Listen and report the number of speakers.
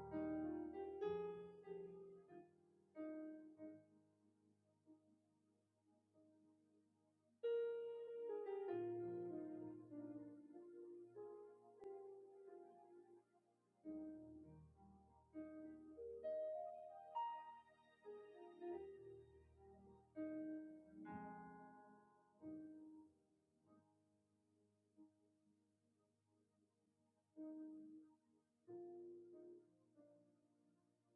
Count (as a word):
zero